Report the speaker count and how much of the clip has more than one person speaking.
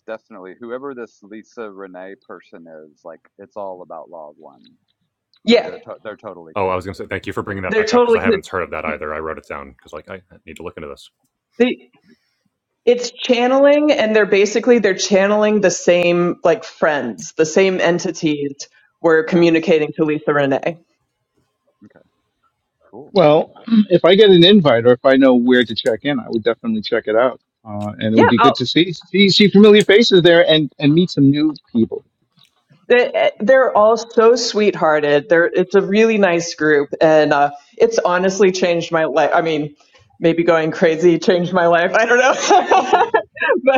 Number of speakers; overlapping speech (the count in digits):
4, about 5%